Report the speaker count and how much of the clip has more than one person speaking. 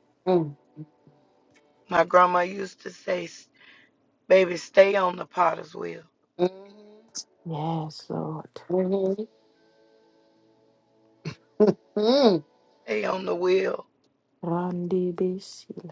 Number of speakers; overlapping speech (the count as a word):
three, no overlap